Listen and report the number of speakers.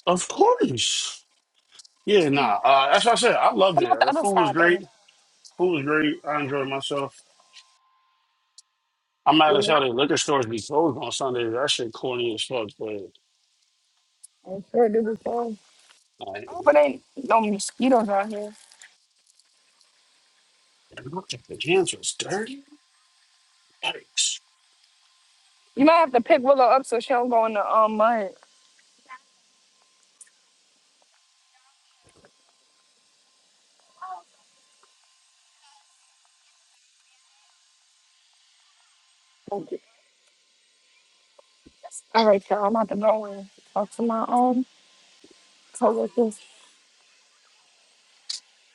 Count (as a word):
two